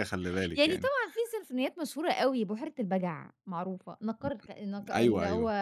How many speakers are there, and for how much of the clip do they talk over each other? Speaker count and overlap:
2, about 16%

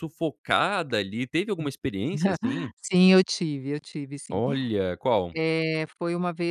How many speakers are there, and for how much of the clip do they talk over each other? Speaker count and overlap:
2, about 1%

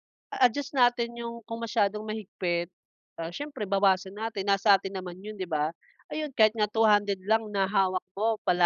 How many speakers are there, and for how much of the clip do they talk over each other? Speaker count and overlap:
1, no overlap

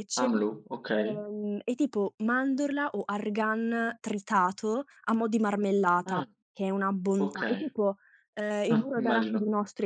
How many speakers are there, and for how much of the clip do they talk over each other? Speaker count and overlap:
2, about 18%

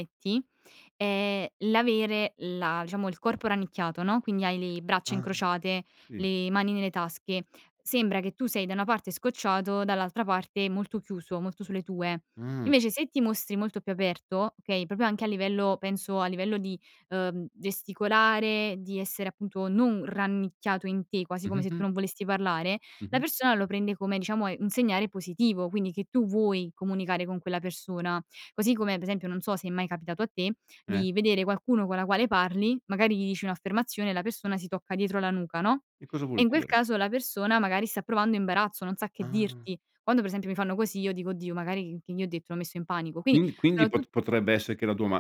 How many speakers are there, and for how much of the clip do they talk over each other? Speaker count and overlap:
2, about 6%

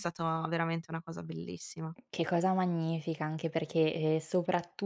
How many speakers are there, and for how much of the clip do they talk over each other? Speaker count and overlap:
2, no overlap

